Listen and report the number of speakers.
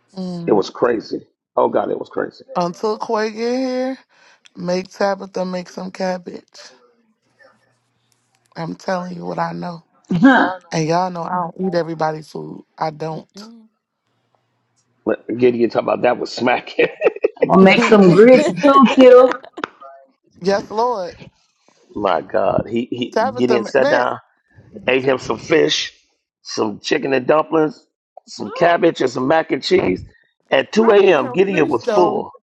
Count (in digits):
3